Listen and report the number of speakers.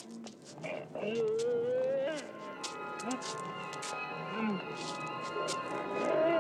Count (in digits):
0